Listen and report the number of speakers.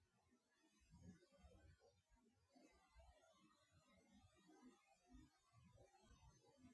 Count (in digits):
0